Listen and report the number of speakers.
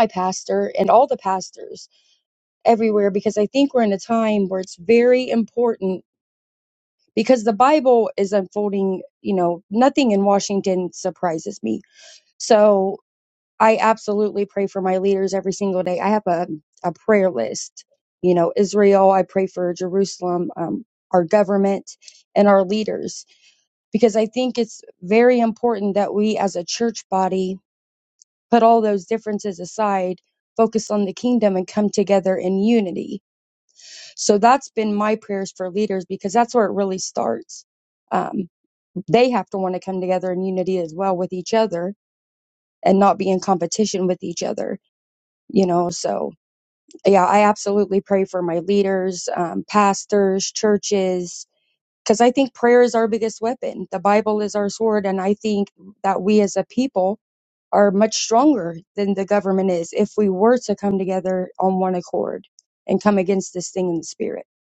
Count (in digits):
1